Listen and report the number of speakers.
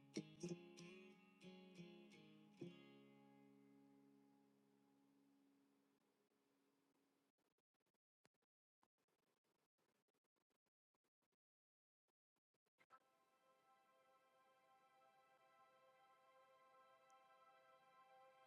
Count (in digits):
0